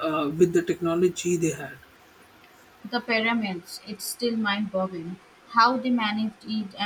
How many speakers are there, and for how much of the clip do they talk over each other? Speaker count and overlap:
2, no overlap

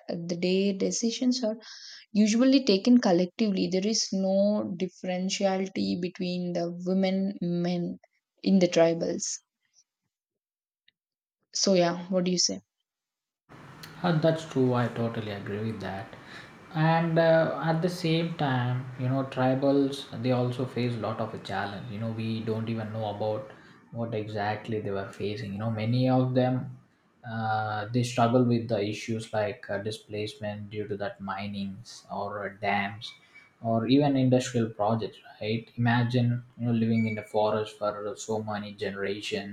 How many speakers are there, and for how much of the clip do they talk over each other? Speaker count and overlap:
2, no overlap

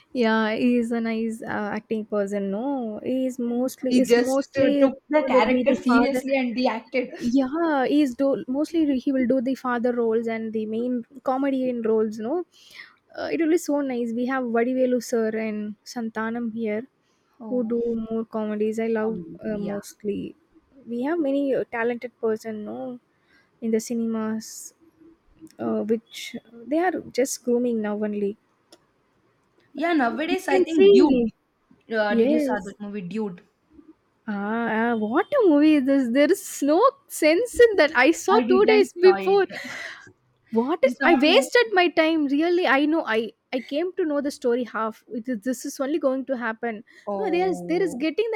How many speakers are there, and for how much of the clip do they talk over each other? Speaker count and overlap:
2, about 15%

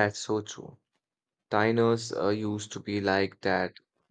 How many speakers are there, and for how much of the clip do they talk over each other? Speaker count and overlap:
1, no overlap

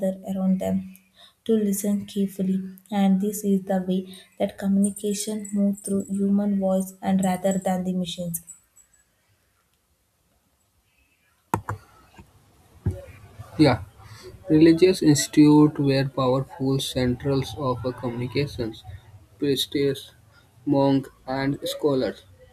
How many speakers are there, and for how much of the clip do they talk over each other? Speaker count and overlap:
2, no overlap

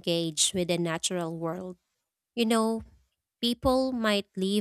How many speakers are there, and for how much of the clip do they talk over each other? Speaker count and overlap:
1, no overlap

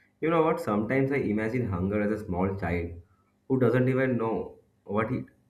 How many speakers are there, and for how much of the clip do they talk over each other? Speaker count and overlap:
1, no overlap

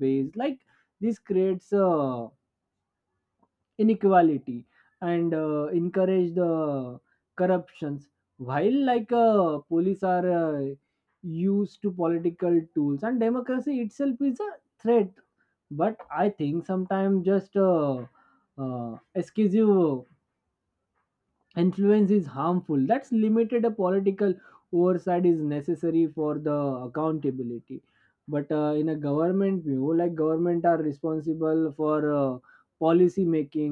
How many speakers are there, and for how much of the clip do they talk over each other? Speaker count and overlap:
1, no overlap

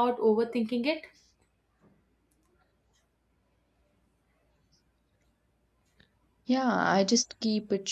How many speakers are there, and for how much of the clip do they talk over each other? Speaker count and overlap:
2, no overlap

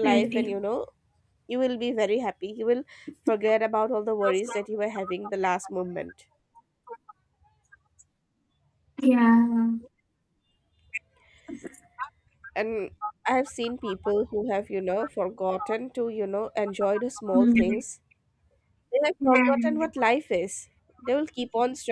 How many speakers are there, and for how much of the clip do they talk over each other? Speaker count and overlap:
2, about 7%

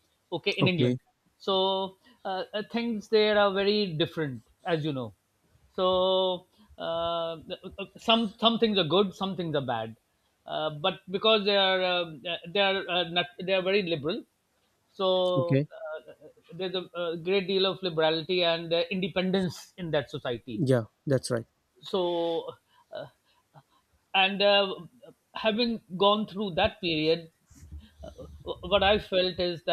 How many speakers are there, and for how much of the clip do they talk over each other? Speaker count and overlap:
2, about 2%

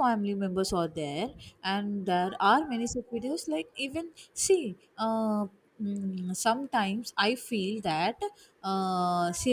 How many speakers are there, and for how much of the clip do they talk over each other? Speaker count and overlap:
1, no overlap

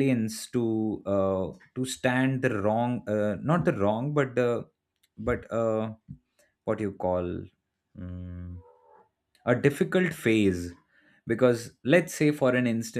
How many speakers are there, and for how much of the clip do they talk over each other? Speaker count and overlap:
1, no overlap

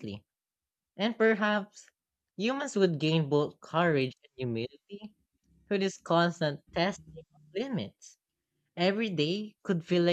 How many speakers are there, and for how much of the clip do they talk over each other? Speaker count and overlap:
1, no overlap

